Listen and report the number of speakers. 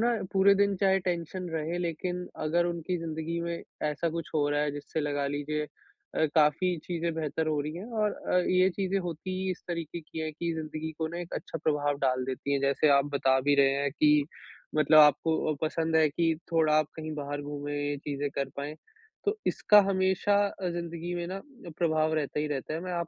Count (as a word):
one